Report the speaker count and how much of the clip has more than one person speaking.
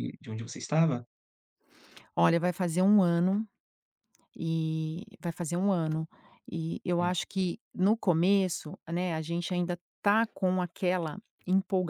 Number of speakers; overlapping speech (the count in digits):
2, about 1%